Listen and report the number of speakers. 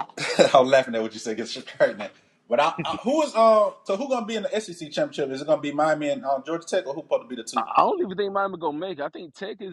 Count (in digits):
2